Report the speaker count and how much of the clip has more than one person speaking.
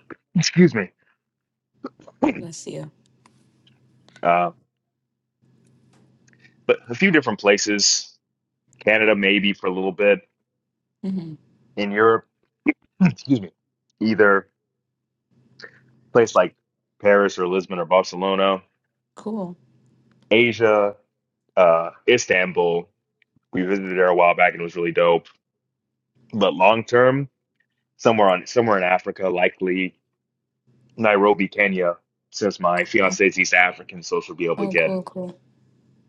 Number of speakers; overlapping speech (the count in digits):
2, about 2%